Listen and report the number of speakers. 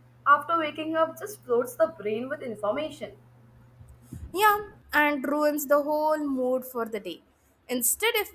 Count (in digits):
2